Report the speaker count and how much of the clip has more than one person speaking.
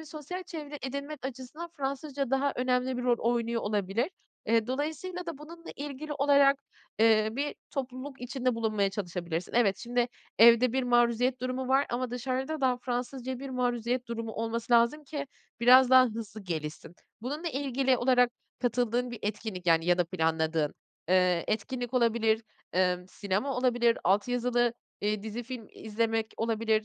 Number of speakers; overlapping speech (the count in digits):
1, no overlap